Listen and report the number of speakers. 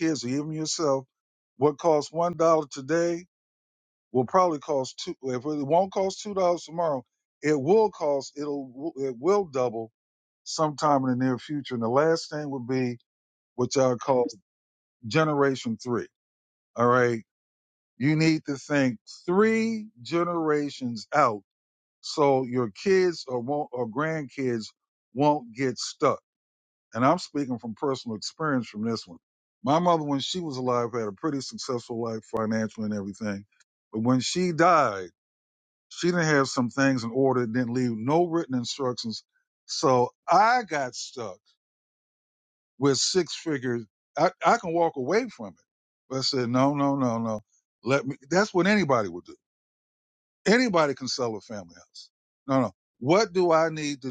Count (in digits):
1